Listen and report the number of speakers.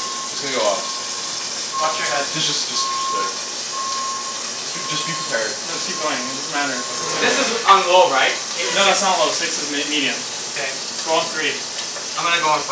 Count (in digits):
3